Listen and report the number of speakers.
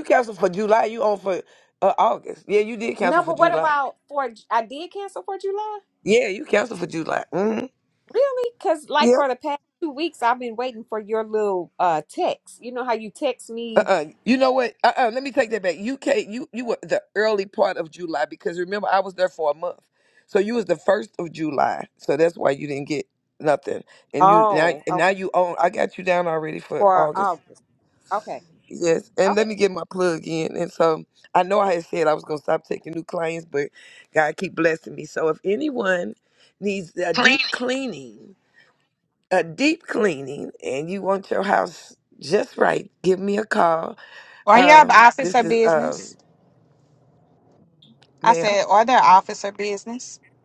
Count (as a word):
three